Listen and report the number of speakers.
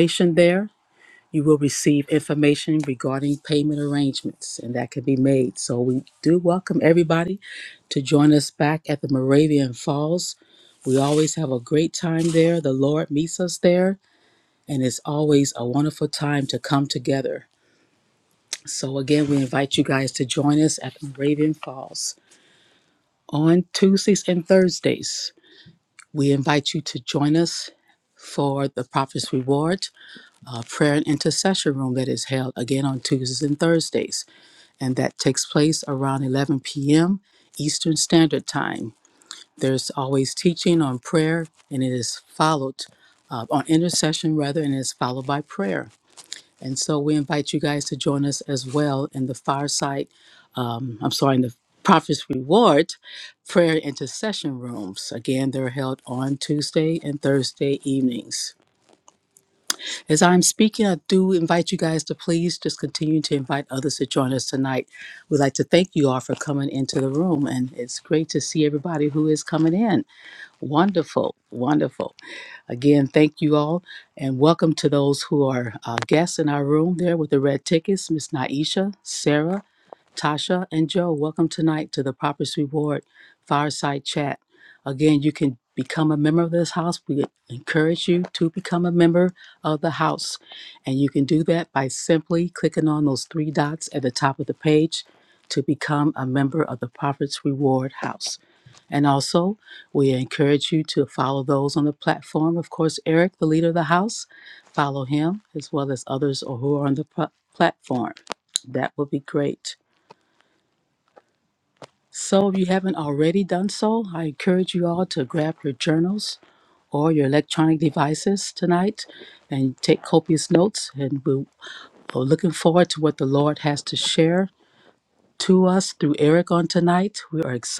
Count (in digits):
1